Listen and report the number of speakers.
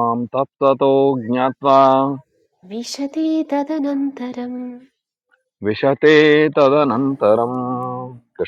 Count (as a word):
two